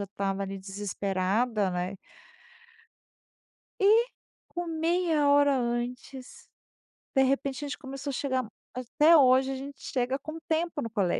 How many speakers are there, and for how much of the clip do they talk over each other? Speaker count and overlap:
1, no overlap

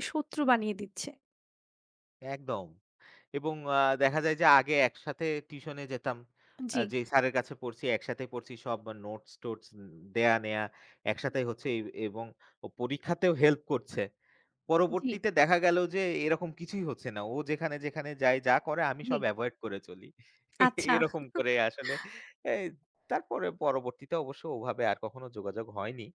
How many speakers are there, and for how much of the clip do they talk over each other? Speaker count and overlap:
2, about 3%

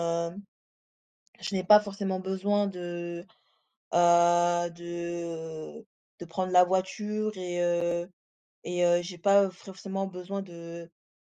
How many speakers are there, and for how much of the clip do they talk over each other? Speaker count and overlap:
1, no overlap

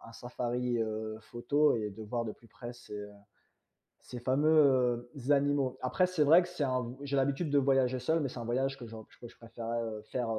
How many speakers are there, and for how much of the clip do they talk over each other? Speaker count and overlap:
1, no overlap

